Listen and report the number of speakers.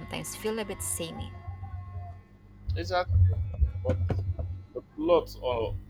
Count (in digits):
2